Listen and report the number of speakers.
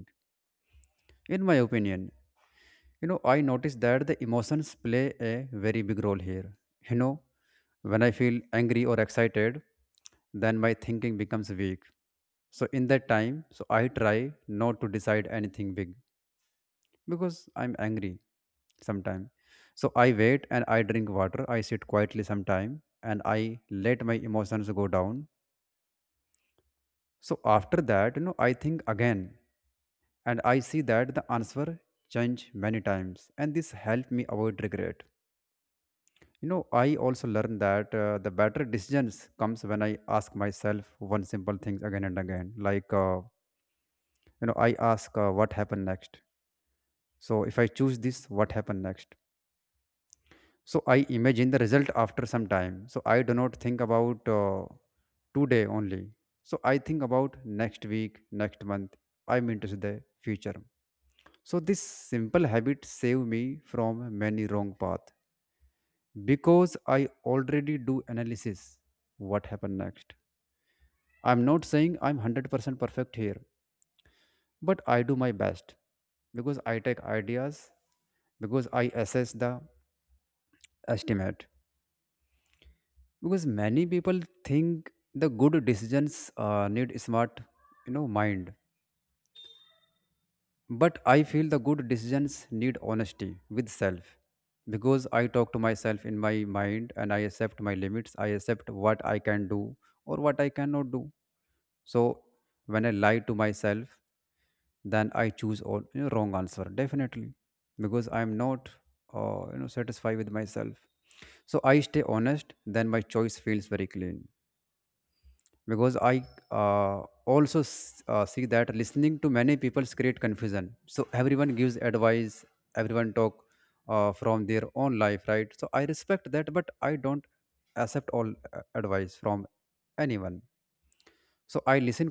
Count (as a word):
one